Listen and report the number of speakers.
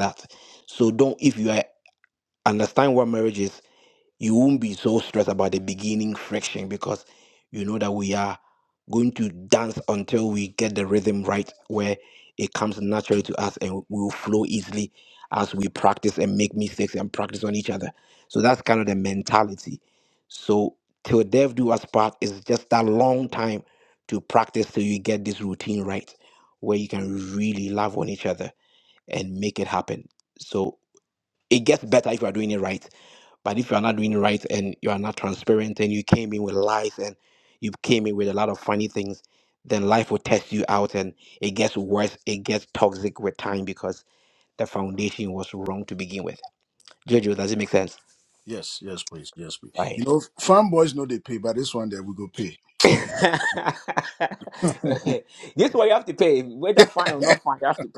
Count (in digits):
2